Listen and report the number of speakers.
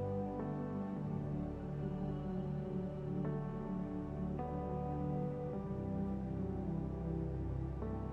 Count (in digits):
0